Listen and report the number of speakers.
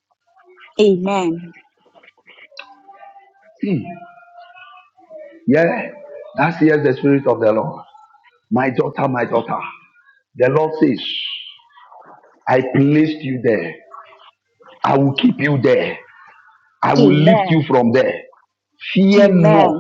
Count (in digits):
2